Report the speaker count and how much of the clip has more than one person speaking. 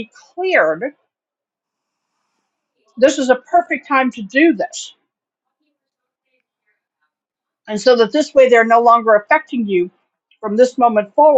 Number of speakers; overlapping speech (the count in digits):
1, no overlap